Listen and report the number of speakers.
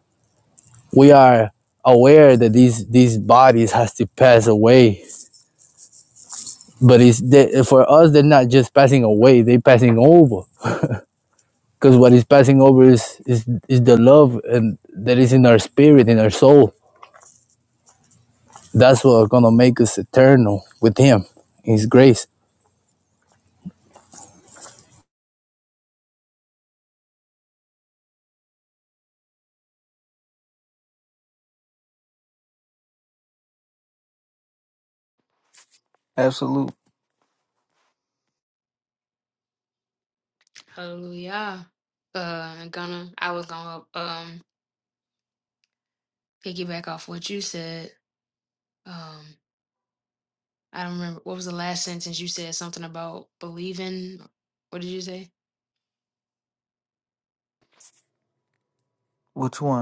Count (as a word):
three